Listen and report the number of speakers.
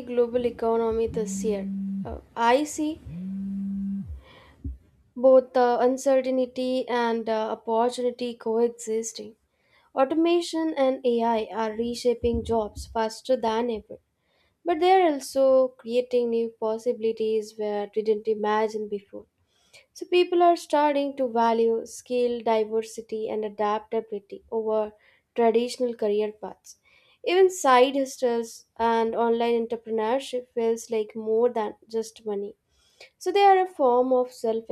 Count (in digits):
1